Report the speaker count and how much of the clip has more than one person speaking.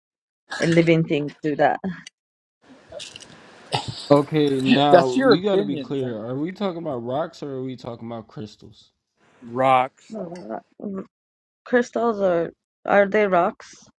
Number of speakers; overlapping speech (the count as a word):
three, about 7%